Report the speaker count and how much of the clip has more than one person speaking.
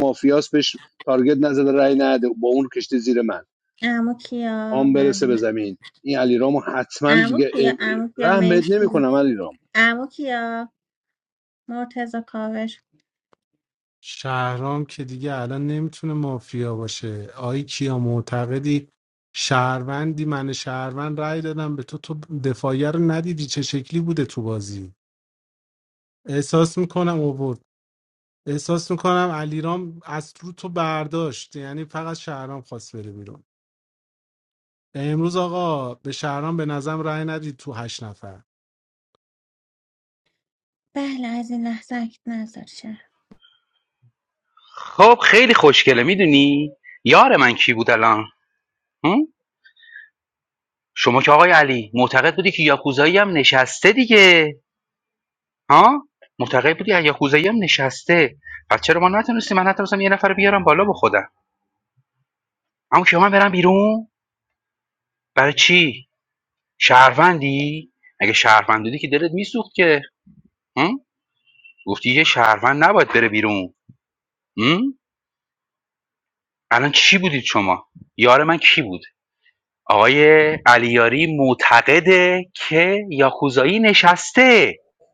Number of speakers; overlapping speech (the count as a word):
four, about 3%